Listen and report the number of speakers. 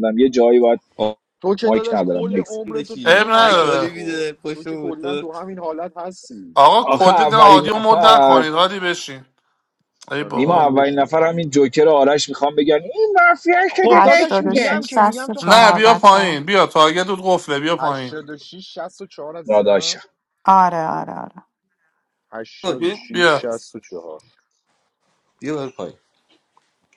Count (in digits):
5